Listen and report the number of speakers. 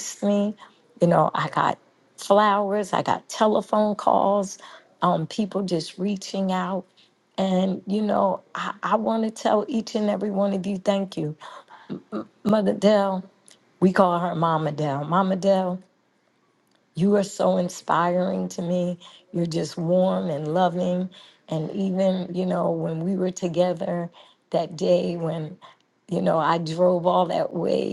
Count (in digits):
1